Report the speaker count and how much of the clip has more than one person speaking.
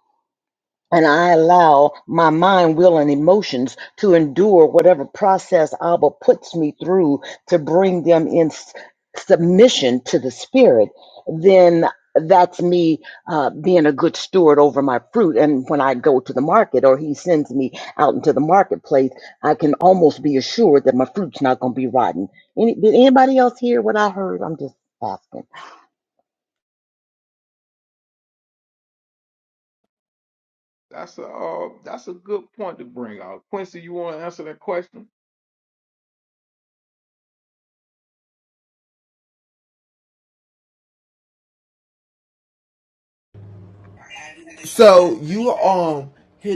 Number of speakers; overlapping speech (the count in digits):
3, no overlap